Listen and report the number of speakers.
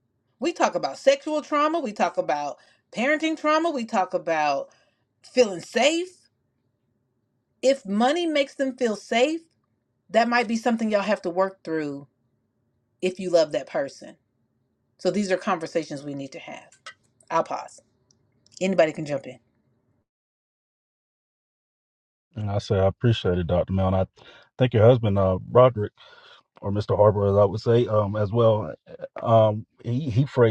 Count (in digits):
2